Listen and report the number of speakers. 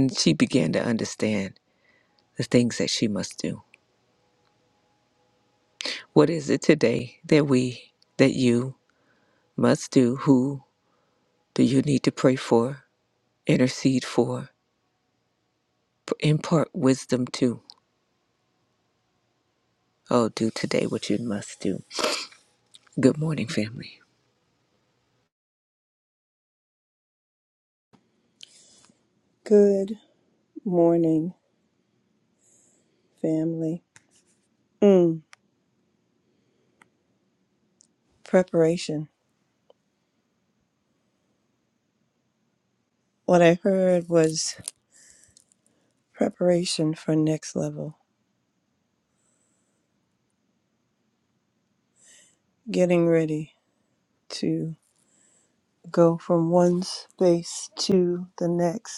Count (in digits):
2